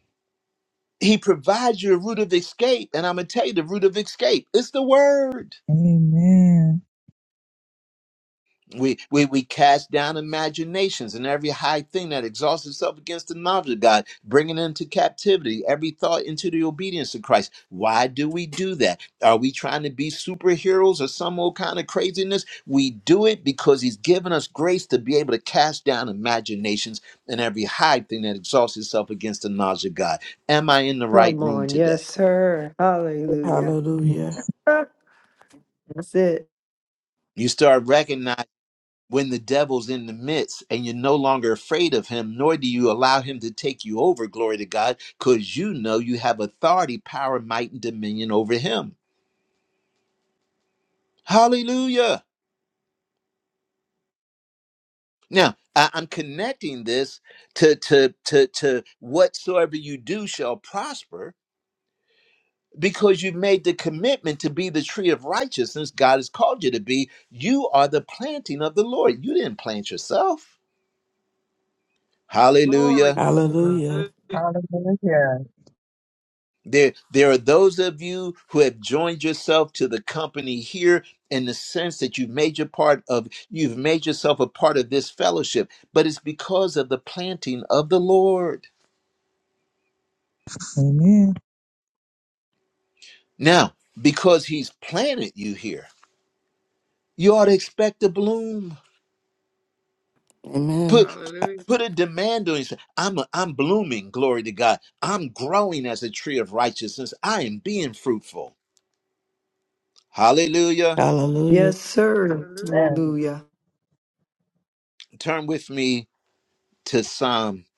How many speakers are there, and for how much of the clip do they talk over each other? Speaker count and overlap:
6, about 3%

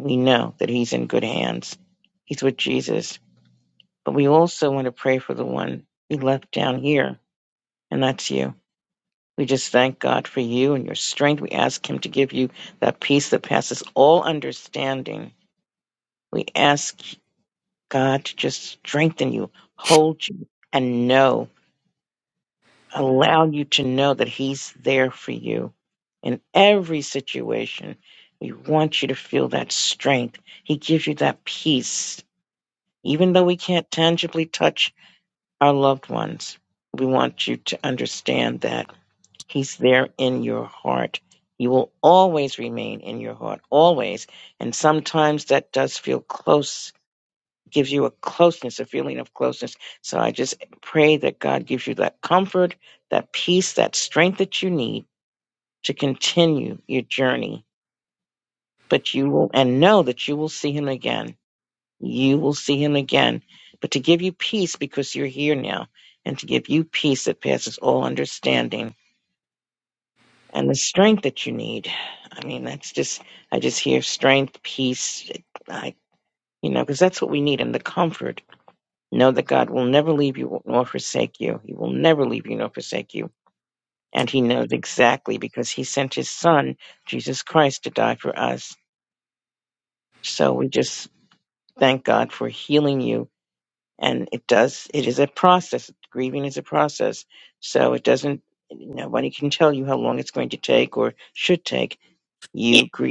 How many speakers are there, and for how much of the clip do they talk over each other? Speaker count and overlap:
1, no overlap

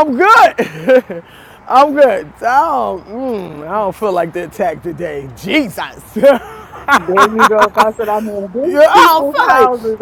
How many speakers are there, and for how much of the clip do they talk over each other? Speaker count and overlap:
2, about 10%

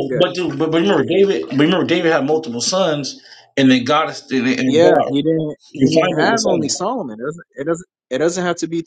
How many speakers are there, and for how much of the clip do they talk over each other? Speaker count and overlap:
2, about 21%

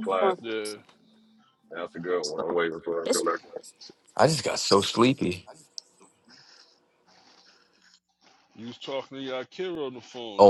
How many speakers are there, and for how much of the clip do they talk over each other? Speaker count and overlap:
3, about 2%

